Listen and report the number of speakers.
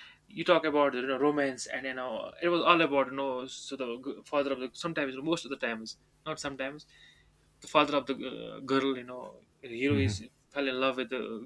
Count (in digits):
1